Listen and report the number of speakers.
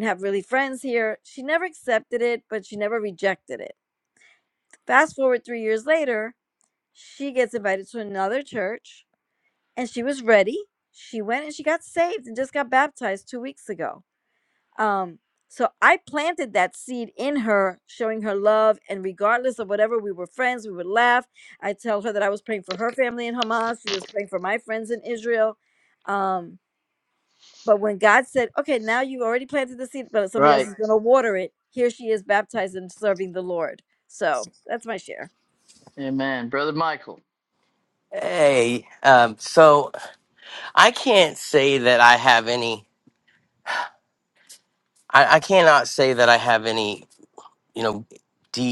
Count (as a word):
three